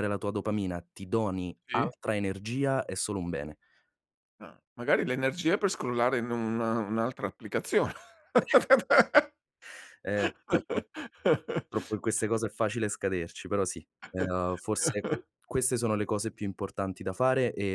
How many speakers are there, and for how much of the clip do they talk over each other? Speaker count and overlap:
two, about 1%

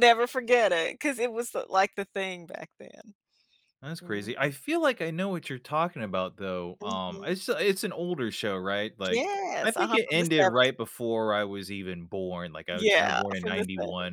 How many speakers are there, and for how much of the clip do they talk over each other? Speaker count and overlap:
two, about 25%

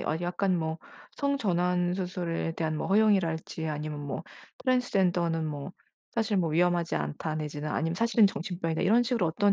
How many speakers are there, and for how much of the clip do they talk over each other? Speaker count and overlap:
one, no overlap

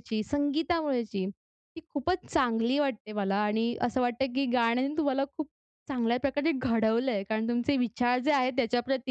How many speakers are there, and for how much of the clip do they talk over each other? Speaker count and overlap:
one, no overlap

